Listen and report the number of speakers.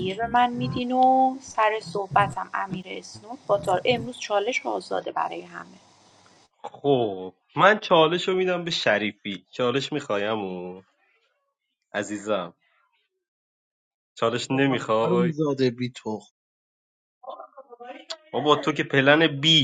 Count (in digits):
3